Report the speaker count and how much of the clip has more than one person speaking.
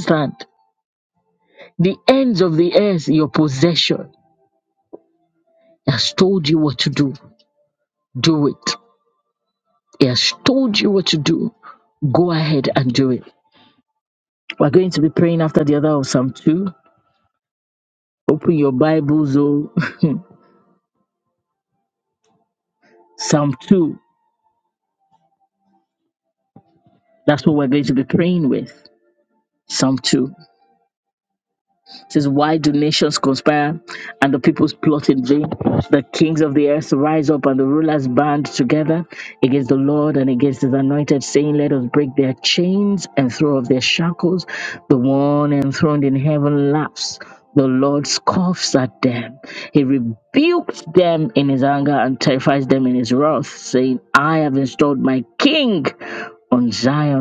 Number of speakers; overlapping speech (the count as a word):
one, no overlap